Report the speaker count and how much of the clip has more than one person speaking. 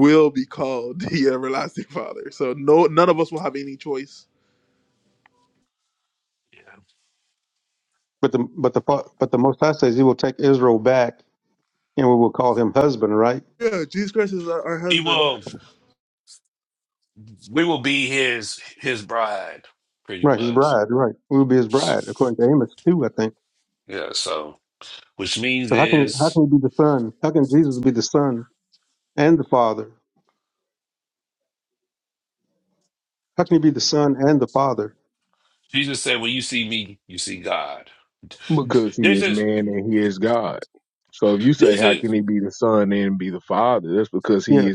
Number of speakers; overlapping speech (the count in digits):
4, about 6%